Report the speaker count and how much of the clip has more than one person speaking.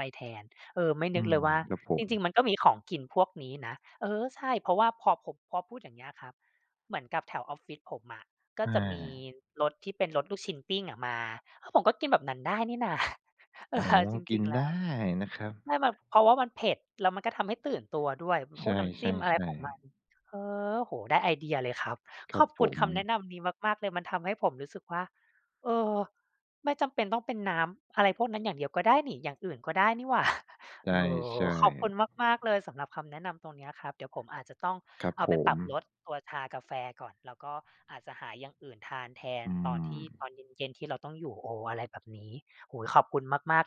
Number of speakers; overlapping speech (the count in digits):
2, about 8%